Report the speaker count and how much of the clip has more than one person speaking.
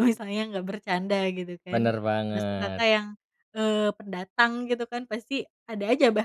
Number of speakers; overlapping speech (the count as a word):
two, about 10%